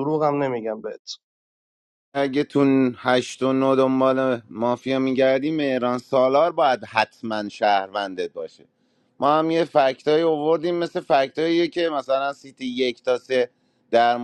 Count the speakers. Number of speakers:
two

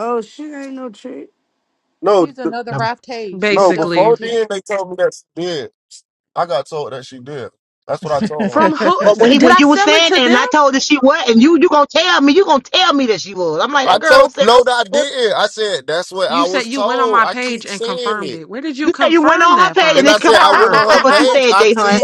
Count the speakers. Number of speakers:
five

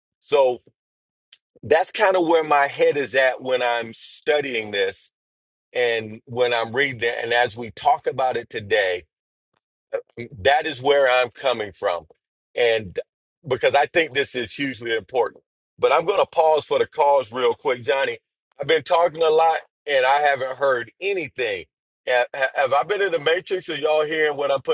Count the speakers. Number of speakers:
one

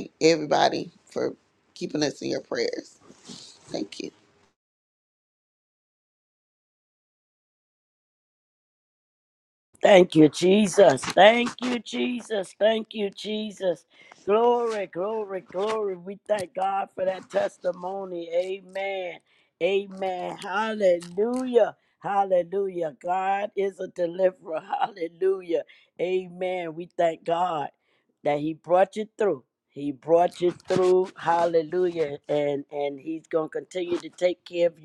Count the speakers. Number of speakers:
two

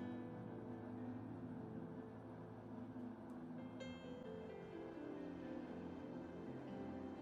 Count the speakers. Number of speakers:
zero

